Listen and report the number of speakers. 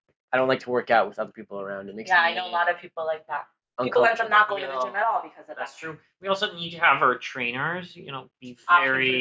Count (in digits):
3